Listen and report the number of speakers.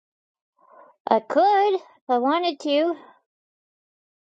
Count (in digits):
1